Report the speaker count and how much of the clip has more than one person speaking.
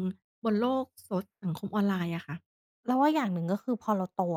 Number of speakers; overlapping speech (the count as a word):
two, no overlap